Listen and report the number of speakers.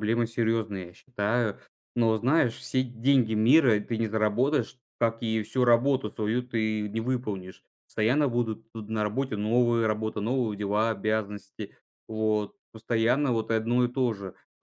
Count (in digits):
1